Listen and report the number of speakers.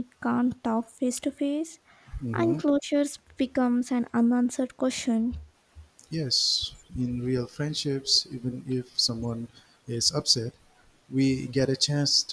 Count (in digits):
2